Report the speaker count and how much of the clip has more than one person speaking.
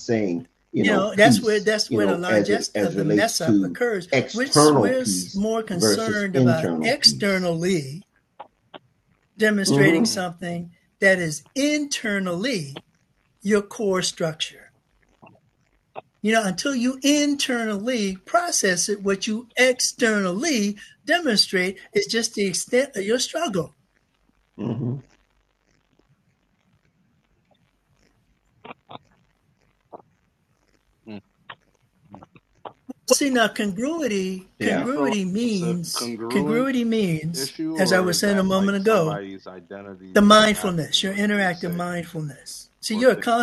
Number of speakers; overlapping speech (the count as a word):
three, about 26%